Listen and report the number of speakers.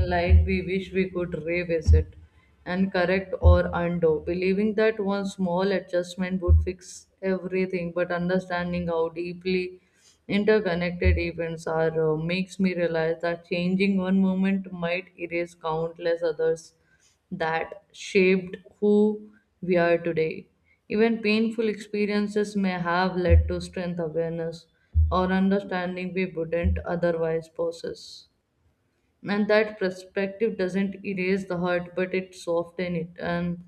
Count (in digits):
1